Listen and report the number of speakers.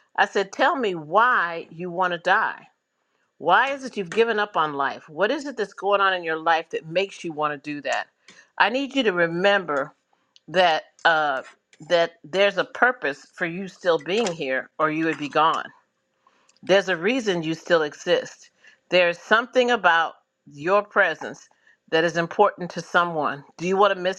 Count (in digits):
1